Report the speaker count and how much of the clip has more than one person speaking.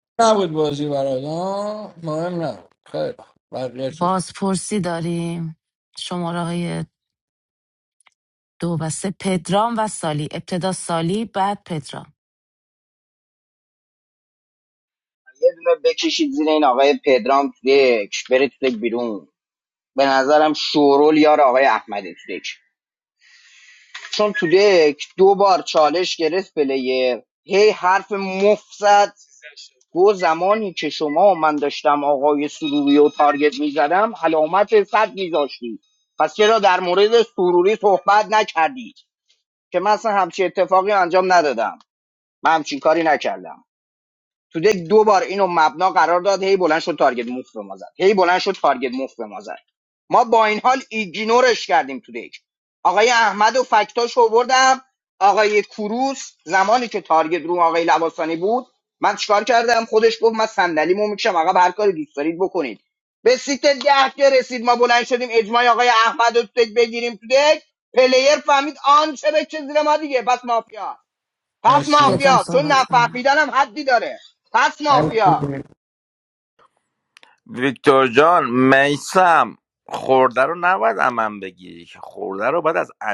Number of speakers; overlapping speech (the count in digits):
4, about 3%